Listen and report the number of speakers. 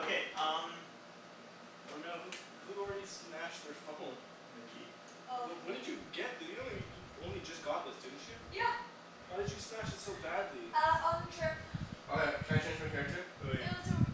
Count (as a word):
four